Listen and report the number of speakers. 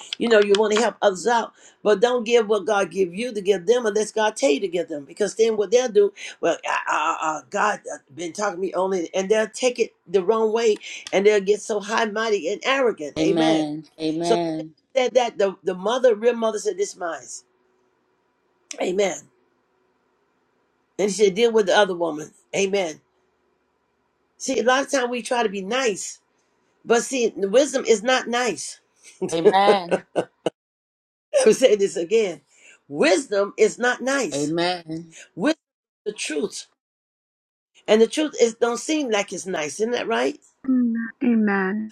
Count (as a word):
three